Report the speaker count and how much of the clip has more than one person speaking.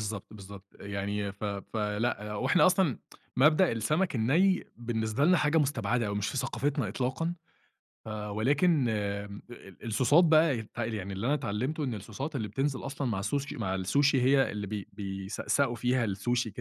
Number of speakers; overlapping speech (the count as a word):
one, no overlap